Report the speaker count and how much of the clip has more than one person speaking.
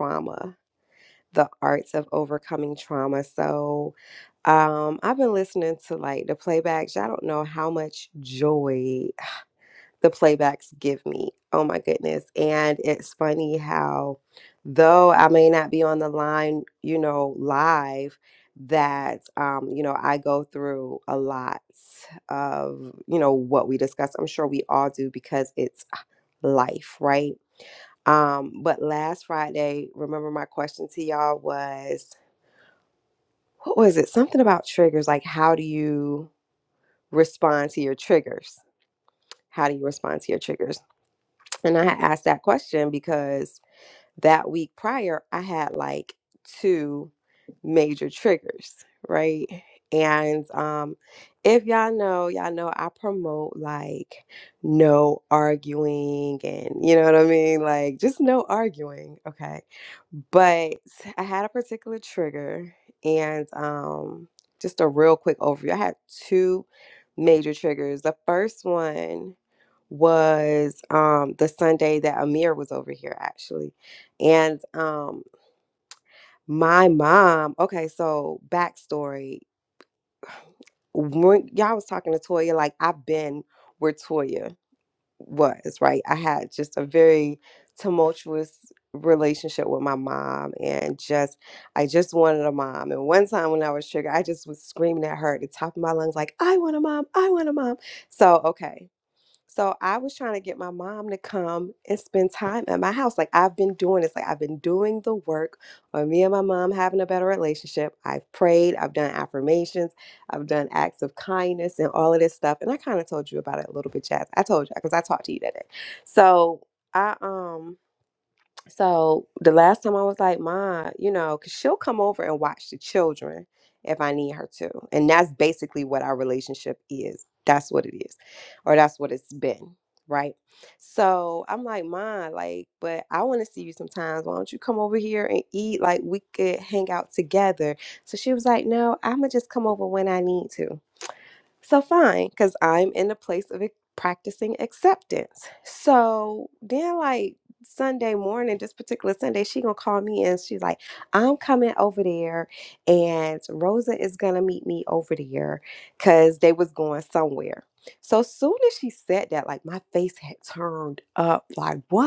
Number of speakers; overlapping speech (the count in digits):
1, no overlap